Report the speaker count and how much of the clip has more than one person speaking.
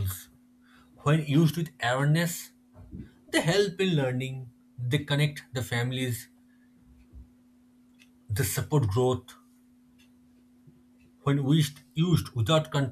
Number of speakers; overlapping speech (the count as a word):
one, no overlap